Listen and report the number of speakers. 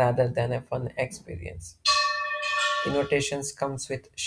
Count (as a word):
one